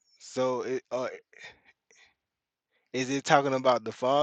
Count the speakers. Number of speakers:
1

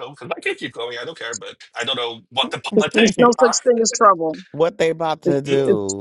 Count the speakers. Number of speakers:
3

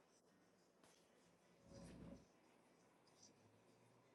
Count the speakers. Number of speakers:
0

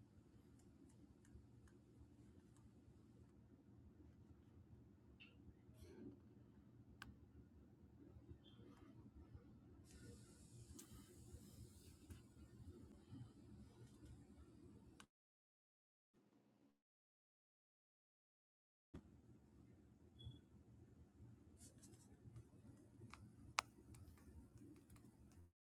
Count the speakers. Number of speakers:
0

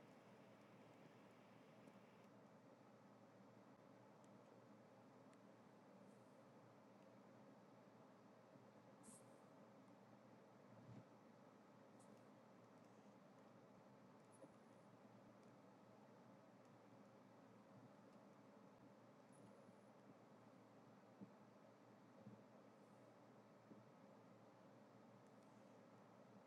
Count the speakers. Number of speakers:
0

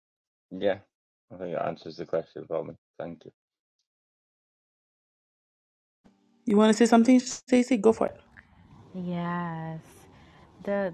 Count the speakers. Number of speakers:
3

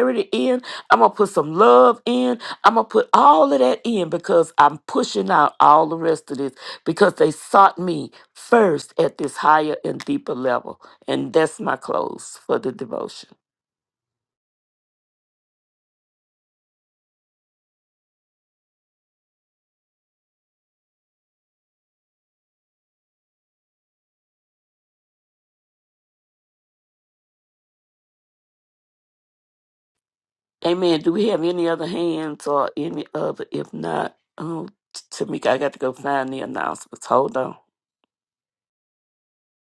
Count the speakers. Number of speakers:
1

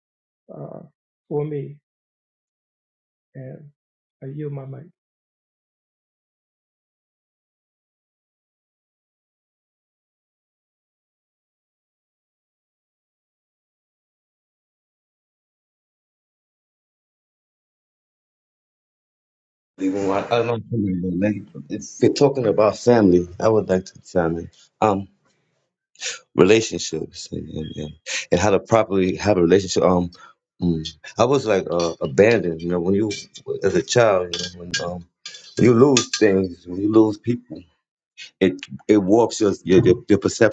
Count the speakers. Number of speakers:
2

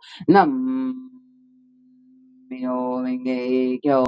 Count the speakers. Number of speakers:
1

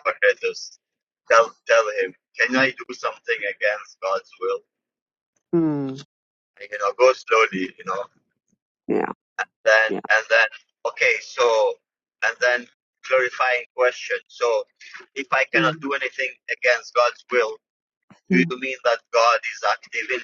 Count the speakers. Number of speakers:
2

